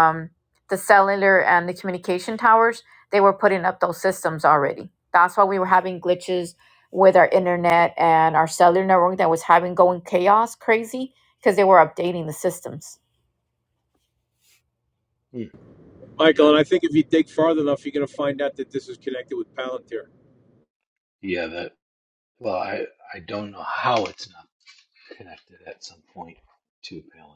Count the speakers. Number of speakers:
3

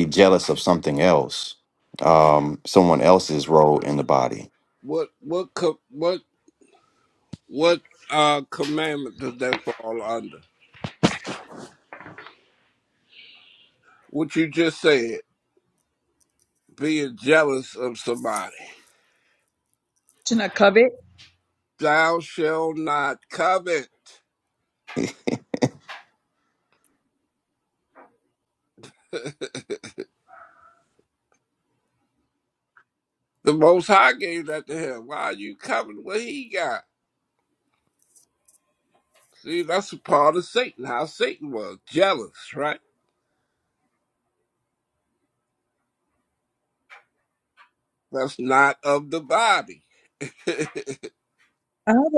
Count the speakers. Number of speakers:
3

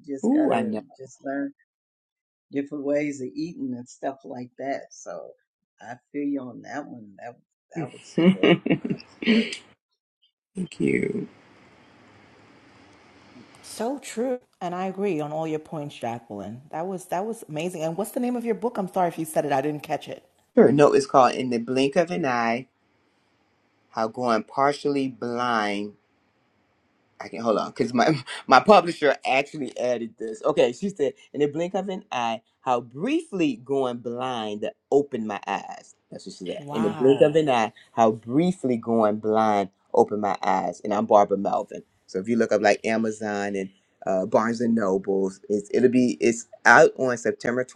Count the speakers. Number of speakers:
3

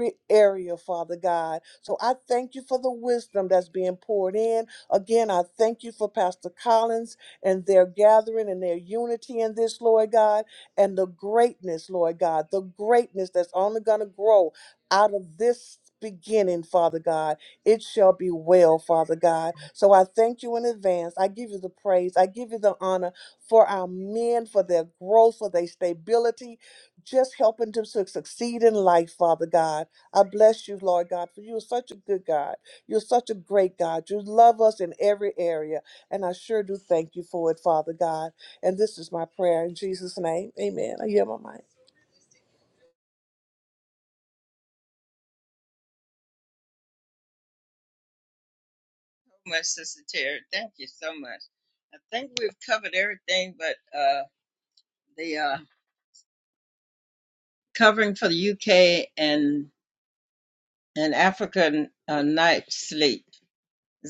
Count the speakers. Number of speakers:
2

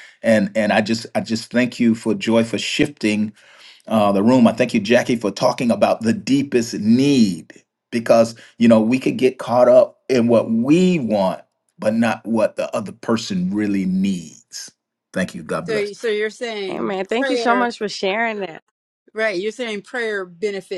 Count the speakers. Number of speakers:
3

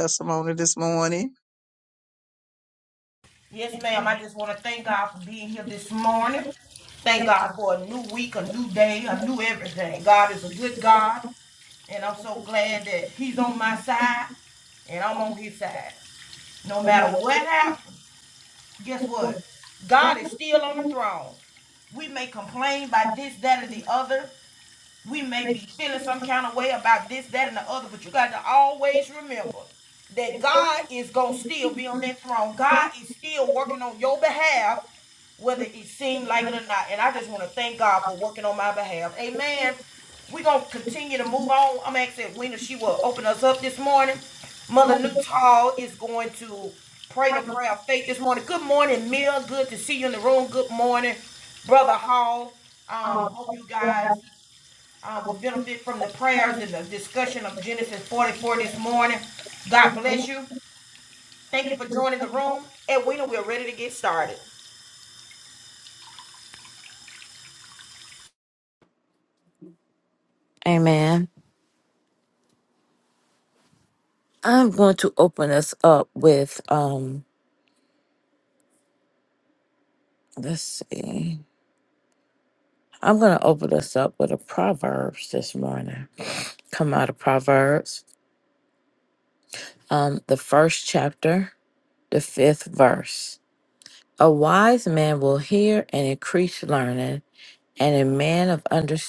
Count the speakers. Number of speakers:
3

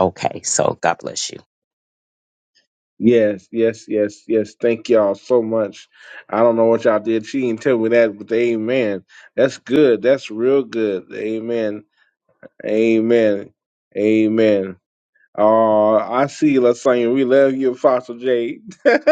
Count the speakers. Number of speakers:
2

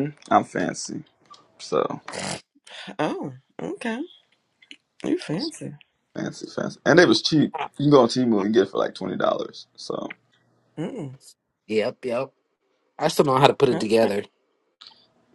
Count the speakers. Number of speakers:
3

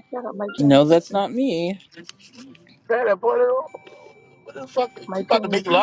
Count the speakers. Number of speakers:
3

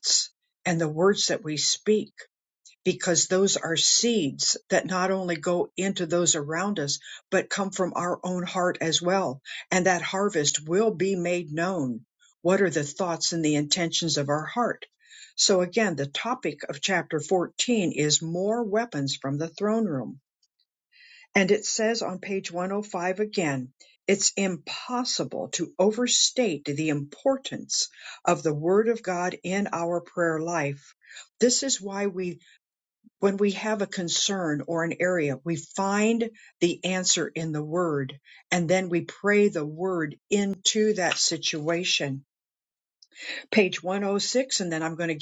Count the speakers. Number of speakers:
1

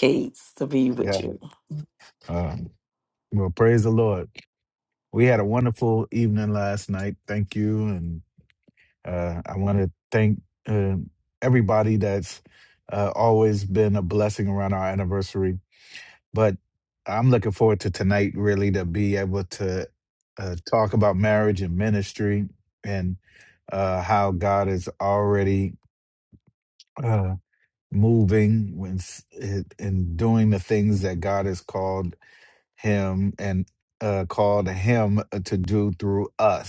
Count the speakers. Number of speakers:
2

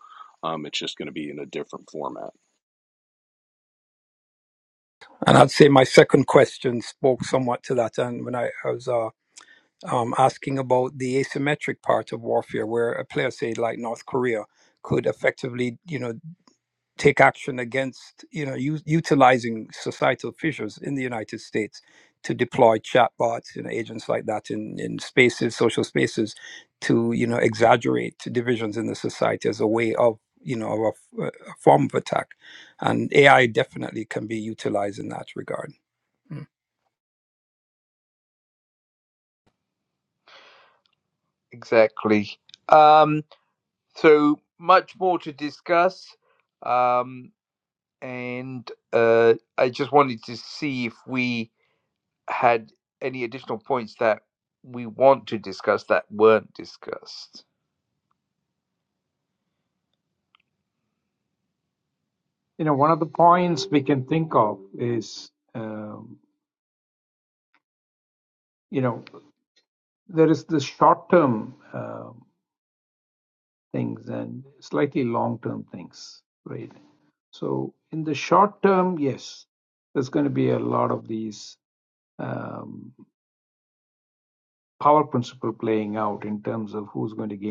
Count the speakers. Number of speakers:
4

